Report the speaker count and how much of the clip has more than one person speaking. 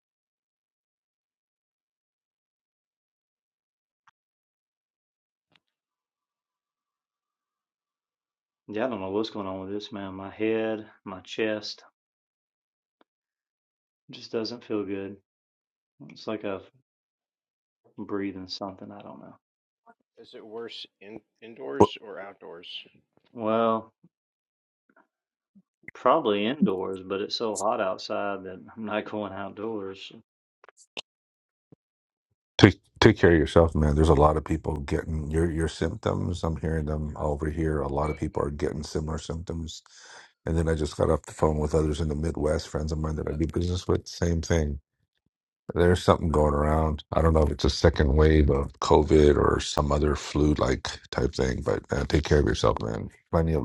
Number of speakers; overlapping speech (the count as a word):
three, under 1%